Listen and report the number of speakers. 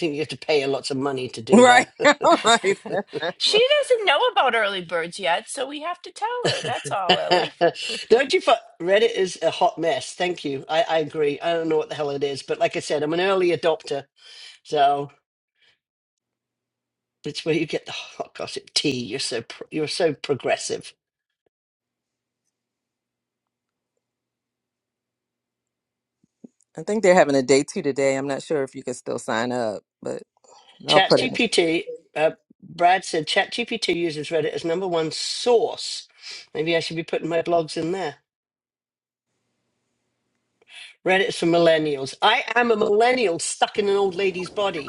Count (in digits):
3